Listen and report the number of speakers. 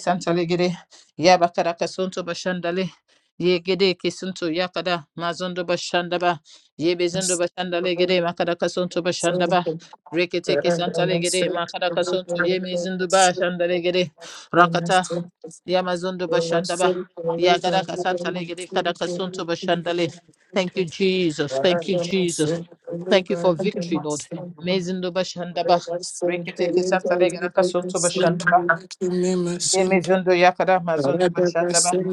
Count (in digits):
2